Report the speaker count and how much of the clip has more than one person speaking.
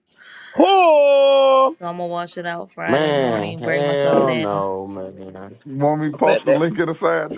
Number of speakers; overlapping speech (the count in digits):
4, about 31%